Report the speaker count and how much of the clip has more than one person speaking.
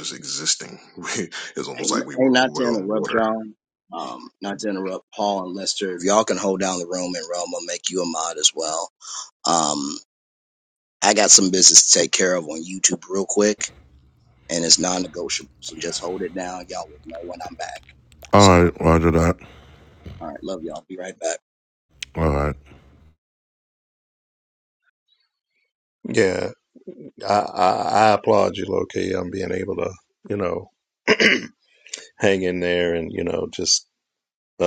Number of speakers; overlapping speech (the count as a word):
four, about 5%